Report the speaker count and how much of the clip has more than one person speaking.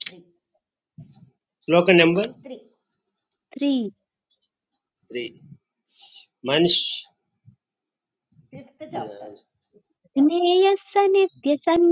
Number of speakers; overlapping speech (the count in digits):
3, no overlap